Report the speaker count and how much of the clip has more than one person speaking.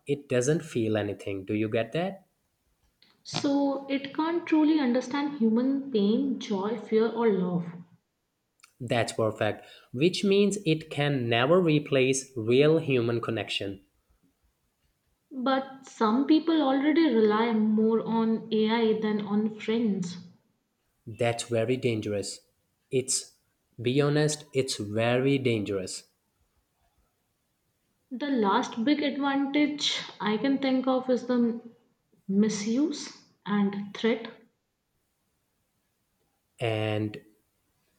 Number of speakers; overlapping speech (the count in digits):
2, no overlap